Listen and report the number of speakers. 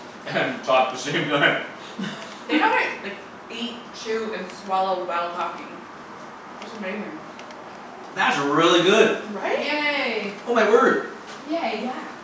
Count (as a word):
three